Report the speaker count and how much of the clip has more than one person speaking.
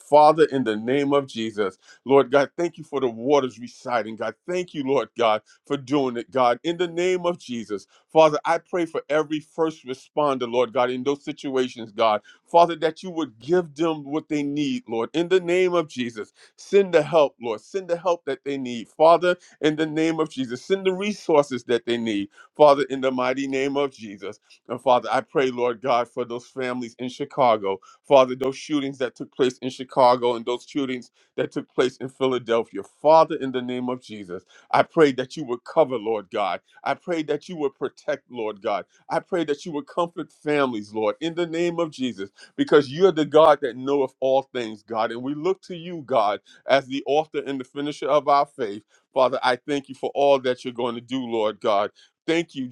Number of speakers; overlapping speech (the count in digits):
1, no overlap